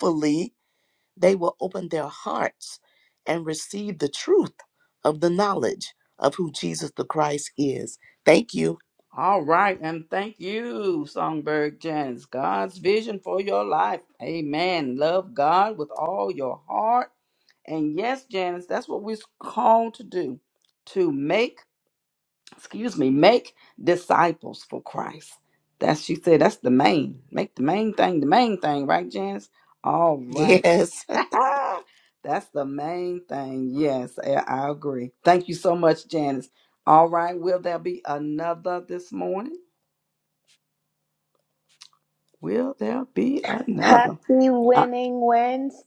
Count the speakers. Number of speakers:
3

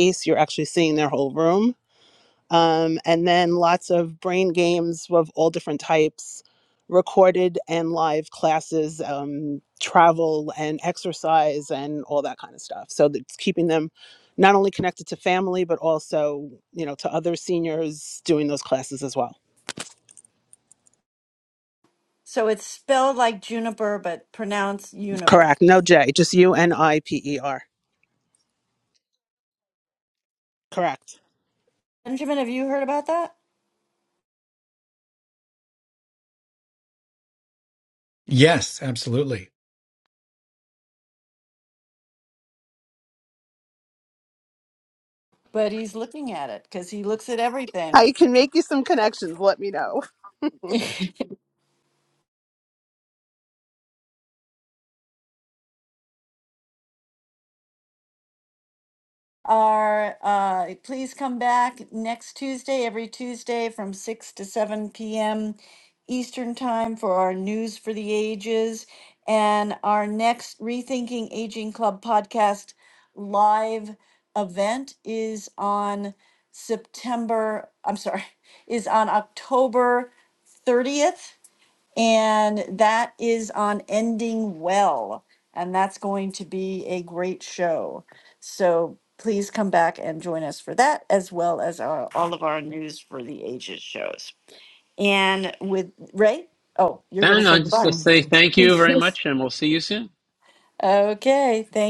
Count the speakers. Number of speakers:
4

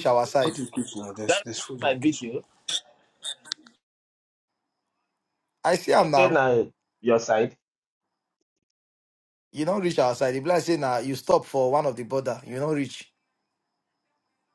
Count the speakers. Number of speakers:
3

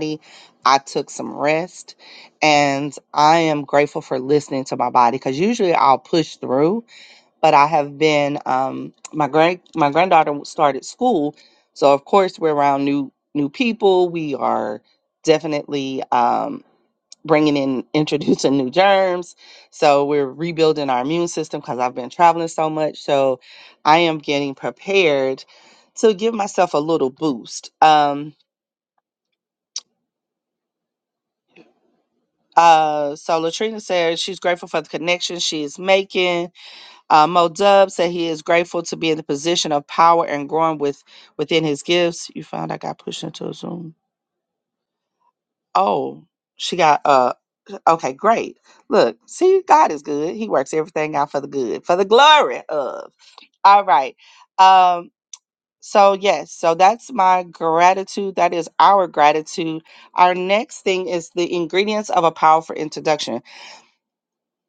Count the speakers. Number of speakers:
1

